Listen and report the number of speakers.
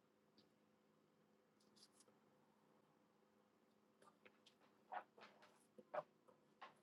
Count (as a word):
zero